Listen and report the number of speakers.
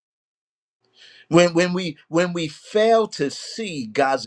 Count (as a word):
one